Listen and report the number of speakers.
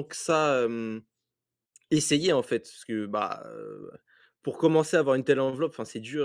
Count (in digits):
1